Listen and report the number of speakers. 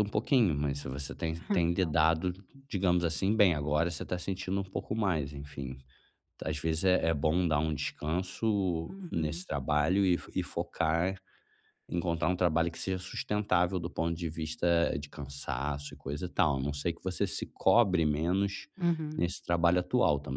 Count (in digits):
2